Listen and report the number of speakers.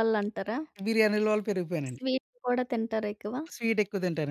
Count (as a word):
two